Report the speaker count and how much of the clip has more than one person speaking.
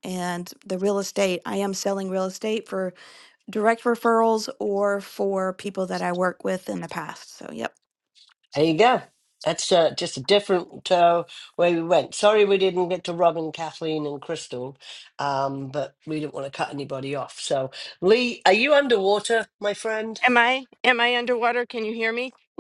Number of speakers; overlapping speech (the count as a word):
three, no overlap